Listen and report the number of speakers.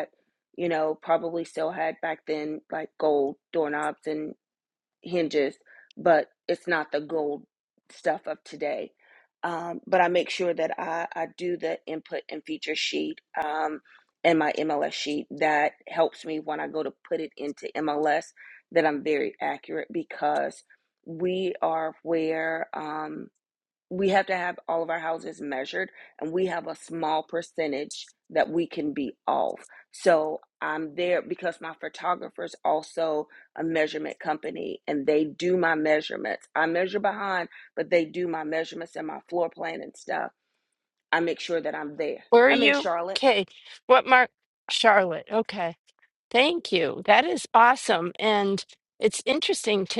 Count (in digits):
2